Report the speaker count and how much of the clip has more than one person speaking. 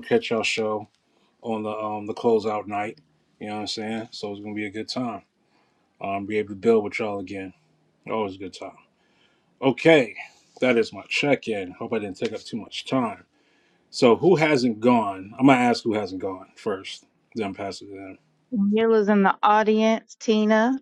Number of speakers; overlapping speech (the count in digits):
2, no overlap